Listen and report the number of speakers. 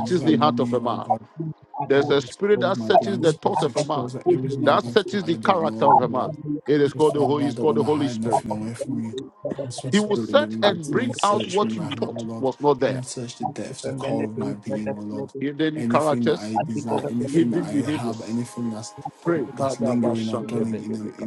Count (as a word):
three